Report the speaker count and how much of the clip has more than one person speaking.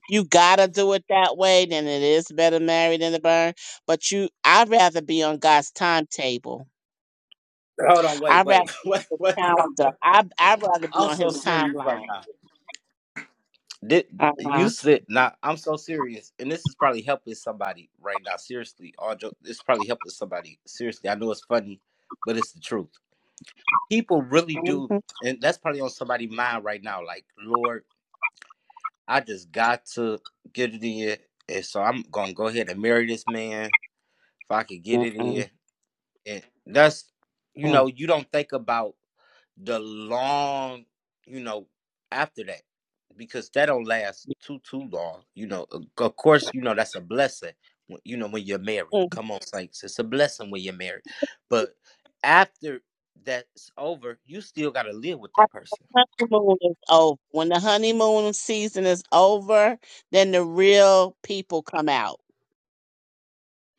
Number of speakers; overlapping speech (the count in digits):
2, about 7%